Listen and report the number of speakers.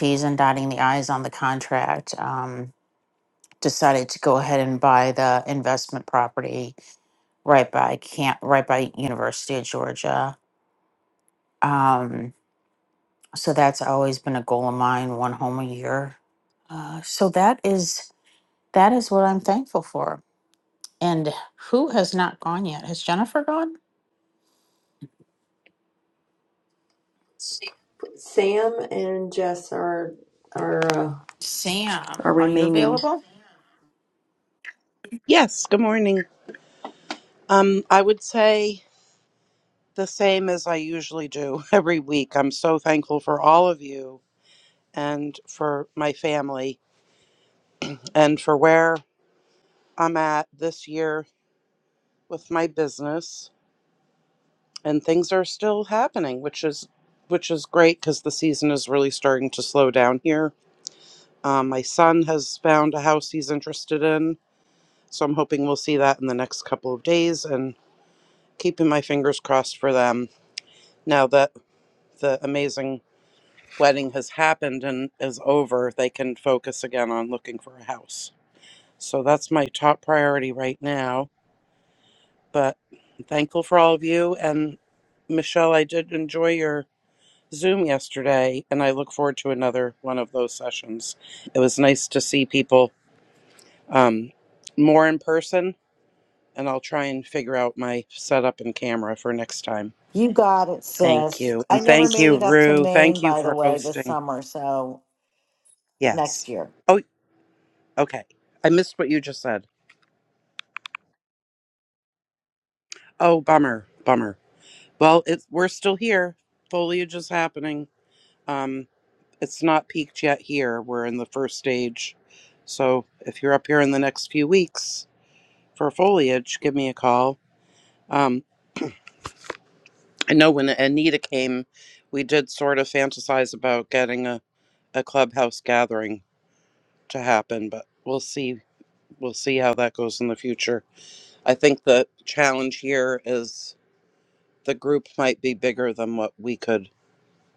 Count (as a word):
four